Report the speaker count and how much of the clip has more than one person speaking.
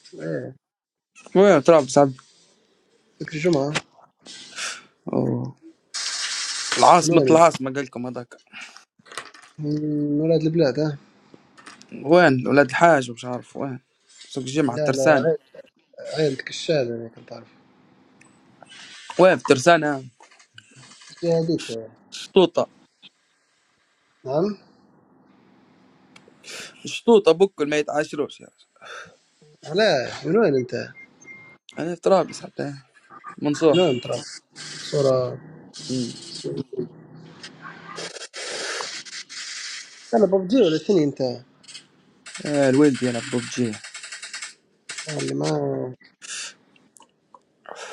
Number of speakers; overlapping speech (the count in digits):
2, about 2%